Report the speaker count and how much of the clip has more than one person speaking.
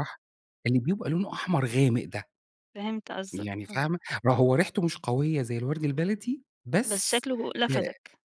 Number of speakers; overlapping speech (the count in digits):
2, about 9%